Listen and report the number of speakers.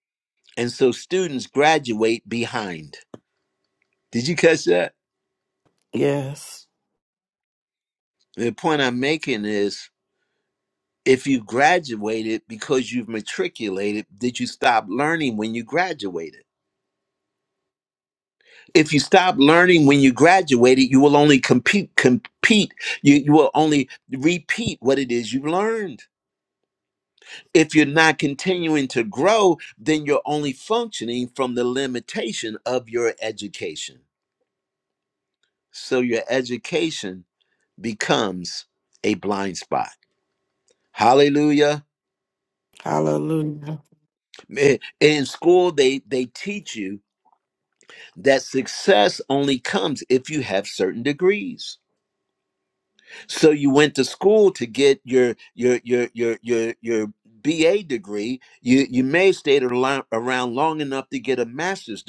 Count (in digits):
2